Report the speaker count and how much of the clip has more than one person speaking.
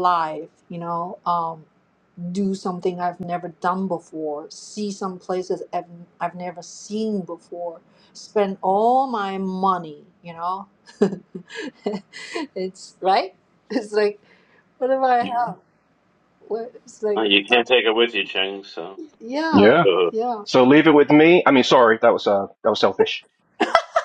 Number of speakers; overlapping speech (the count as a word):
three, about 2%